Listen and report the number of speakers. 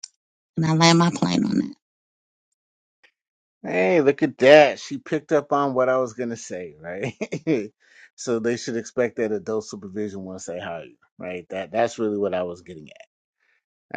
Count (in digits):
2